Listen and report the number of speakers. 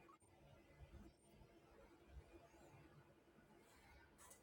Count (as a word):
zero